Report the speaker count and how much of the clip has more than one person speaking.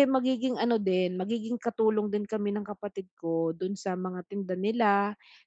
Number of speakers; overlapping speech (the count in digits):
1, no overlap